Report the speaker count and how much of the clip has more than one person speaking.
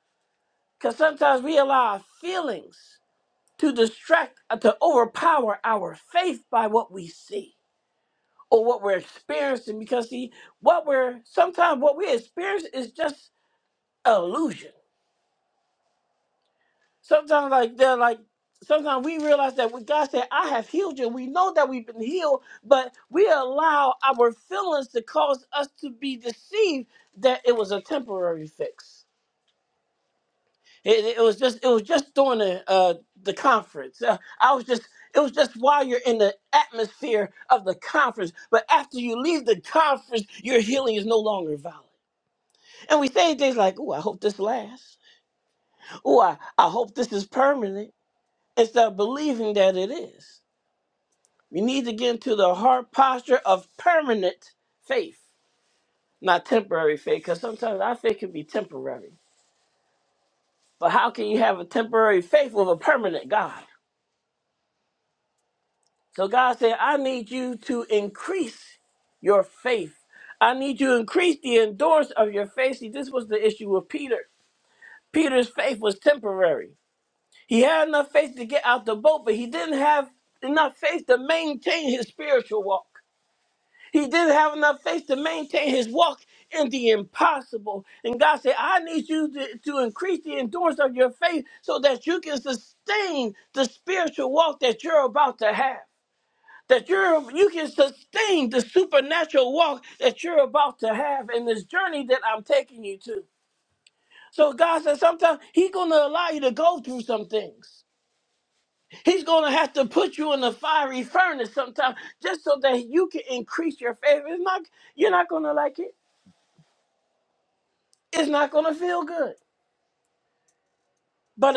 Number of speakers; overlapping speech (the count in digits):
1, no overlap